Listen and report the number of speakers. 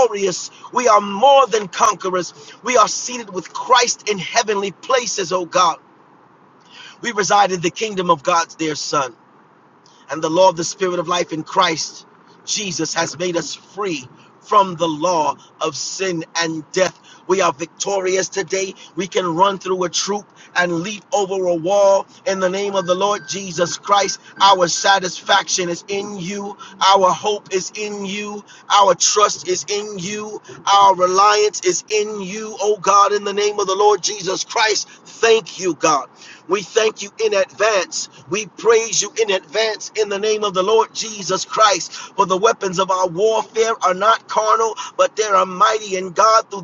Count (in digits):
1